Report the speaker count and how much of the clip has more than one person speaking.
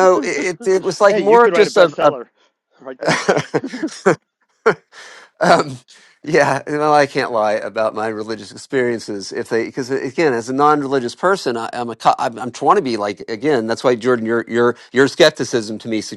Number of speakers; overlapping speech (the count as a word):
two, about 6%